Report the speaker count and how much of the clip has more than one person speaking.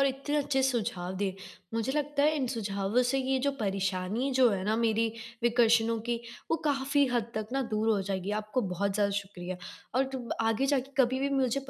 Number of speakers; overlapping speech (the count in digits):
1, no overlap